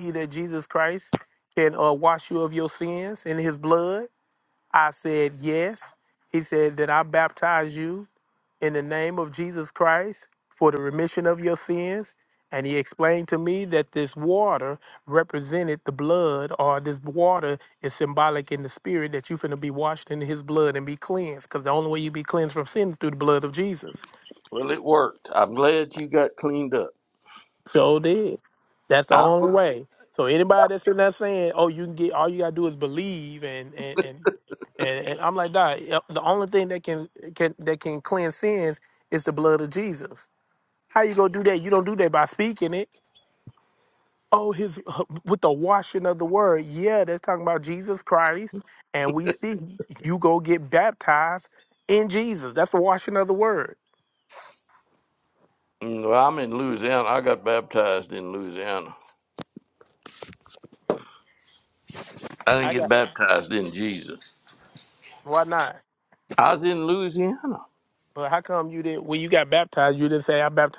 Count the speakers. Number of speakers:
2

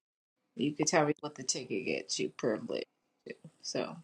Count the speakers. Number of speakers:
1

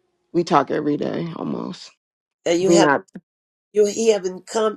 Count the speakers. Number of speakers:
2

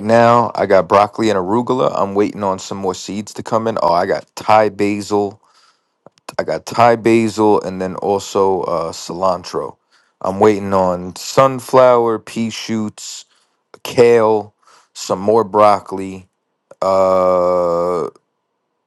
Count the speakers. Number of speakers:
1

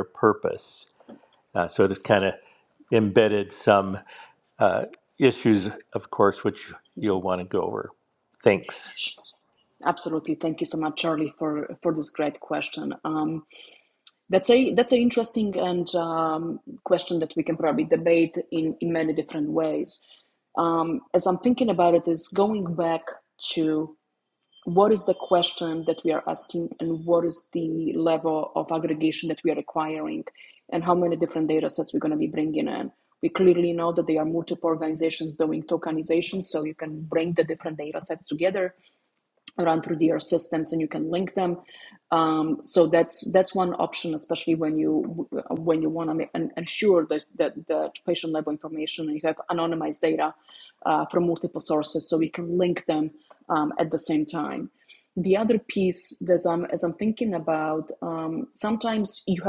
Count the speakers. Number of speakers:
2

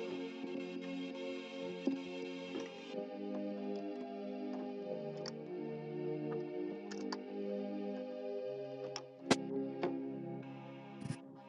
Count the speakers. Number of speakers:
0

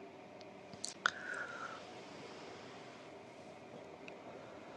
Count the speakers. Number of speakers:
0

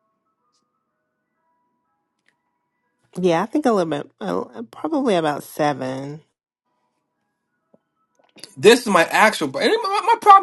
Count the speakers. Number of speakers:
2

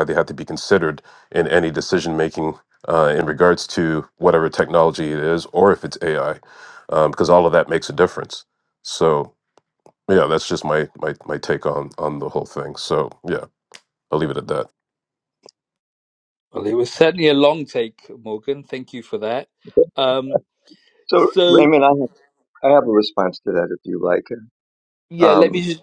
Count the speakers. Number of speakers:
3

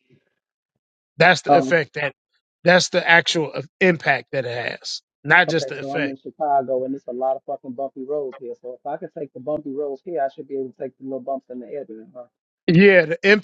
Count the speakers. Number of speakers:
2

